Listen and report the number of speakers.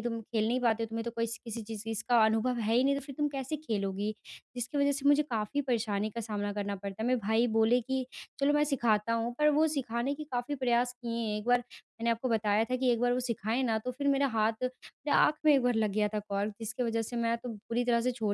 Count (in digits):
1